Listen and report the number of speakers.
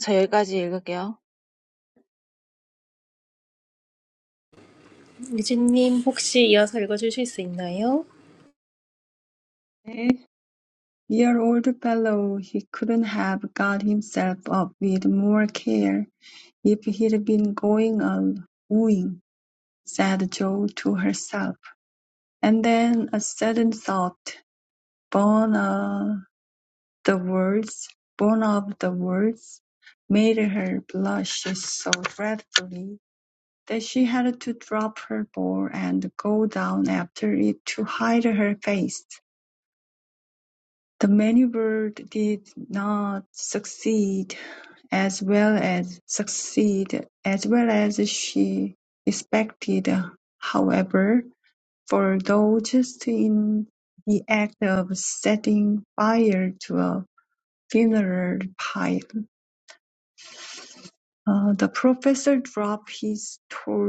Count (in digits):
3